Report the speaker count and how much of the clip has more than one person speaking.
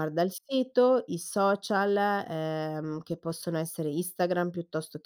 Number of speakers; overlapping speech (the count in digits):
1, no overlap